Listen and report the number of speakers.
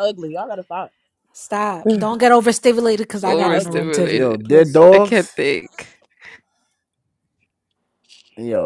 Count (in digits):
4